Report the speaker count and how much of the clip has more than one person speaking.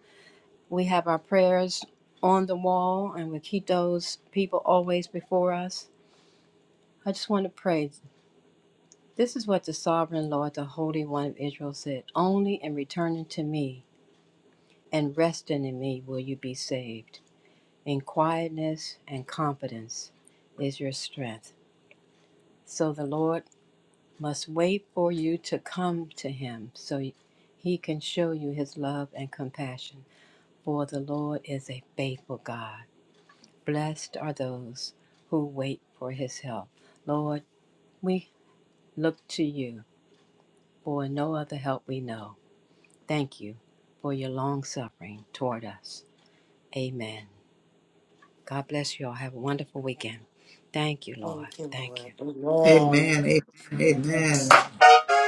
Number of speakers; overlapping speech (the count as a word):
three, about 3%